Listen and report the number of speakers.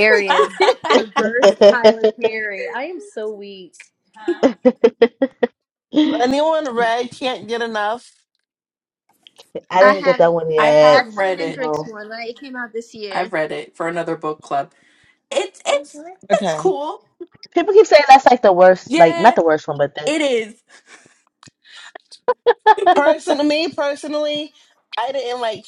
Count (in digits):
5